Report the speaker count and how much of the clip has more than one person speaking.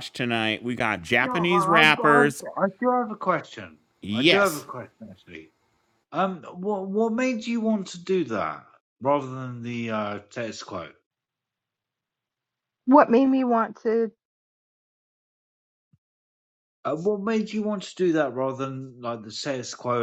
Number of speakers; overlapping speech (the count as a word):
three, about 7%